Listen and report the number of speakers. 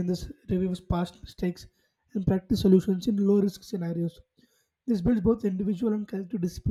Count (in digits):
1